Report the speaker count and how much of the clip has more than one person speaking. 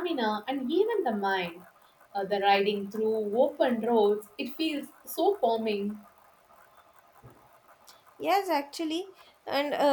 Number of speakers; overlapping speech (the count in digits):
2, no overlap